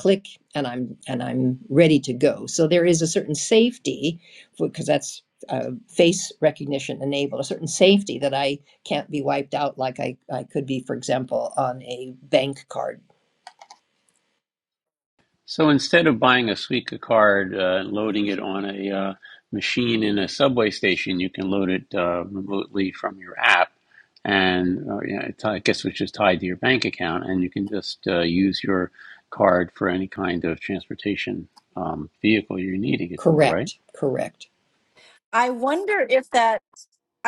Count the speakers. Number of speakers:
three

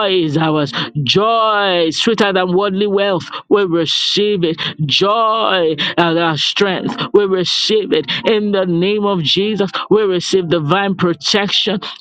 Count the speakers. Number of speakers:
one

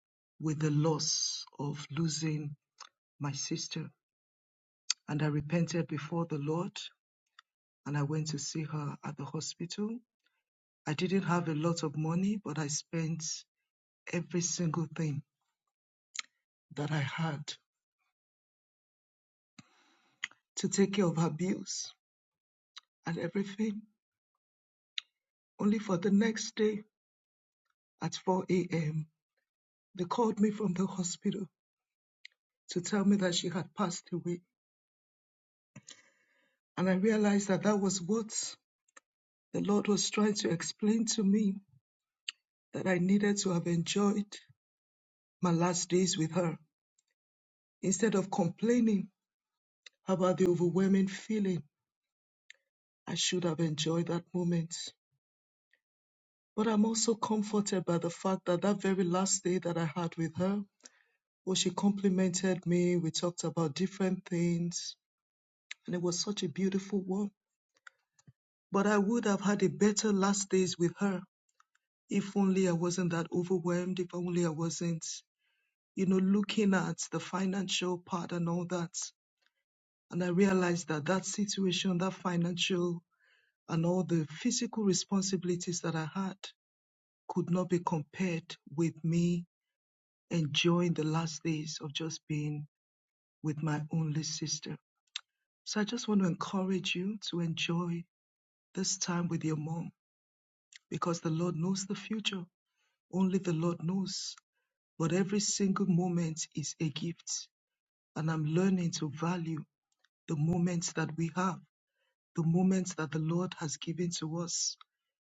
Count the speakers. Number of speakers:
one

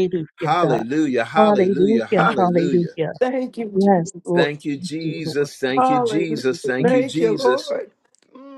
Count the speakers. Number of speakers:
three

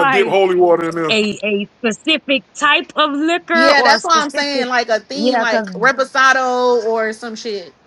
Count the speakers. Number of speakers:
three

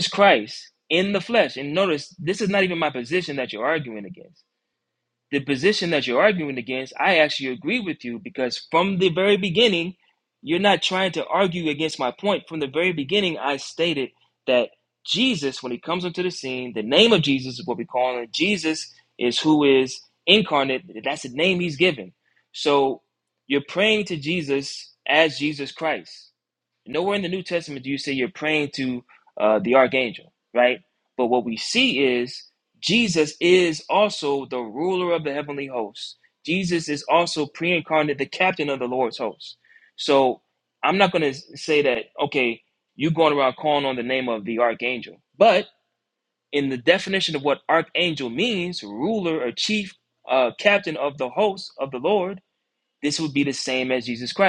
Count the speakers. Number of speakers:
one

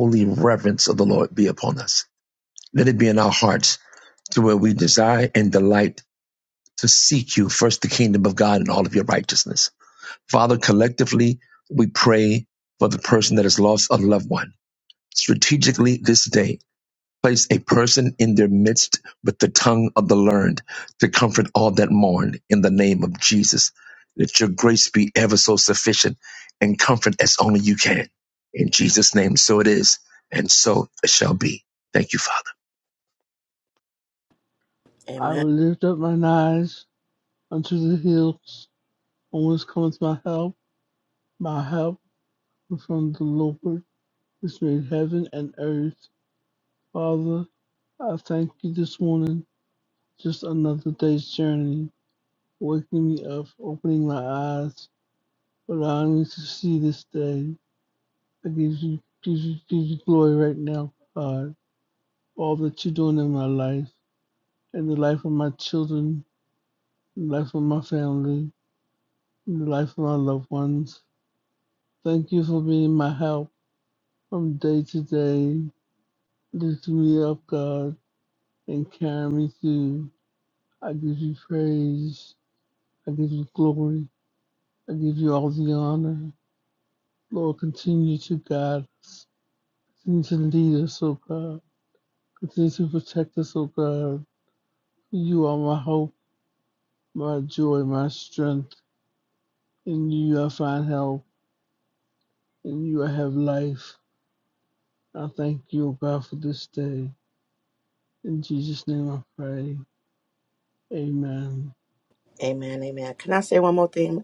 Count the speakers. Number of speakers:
three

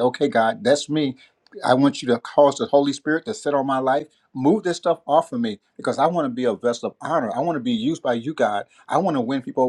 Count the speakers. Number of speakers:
one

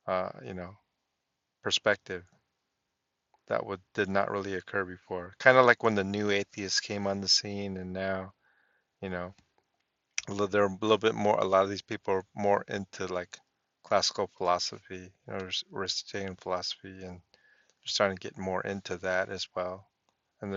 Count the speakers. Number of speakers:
one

